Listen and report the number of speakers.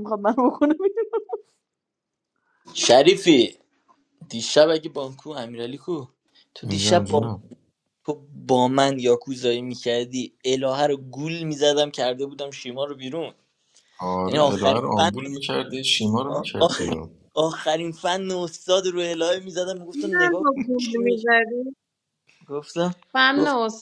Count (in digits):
4